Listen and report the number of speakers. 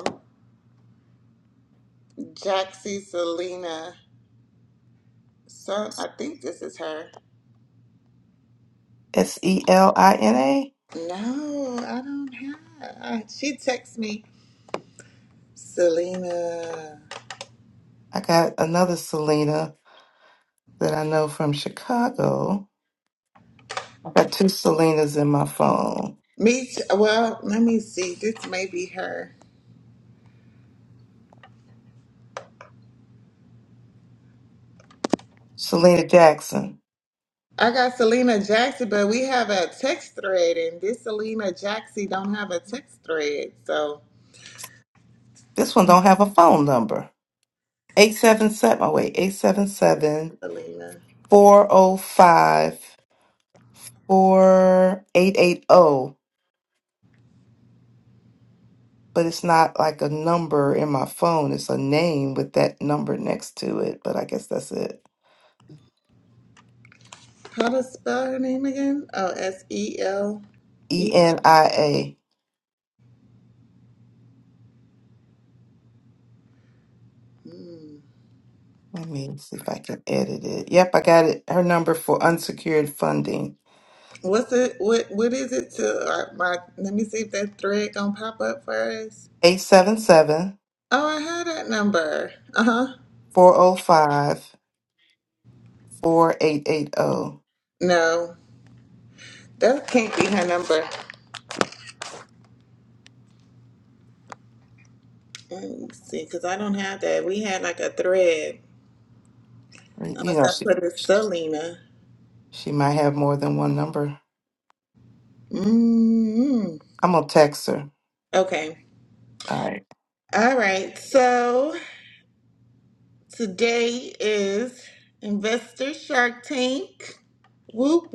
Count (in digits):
2